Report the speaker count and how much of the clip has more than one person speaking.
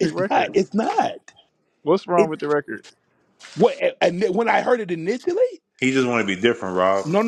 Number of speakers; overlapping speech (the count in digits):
3, about 10%